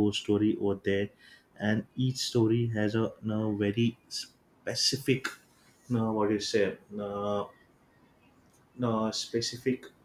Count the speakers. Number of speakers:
1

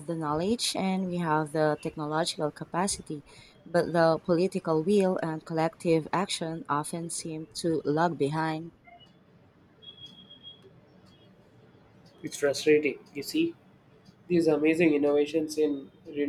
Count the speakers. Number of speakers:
2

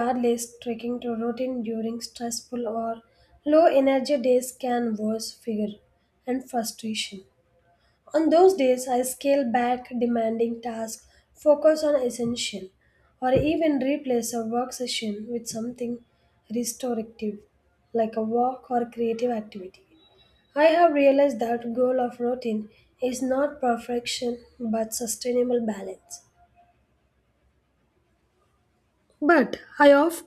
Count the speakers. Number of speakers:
1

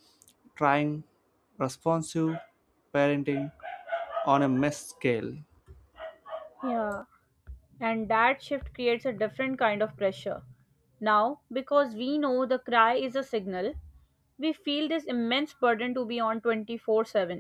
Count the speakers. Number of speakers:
2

